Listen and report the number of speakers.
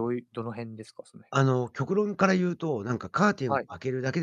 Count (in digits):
2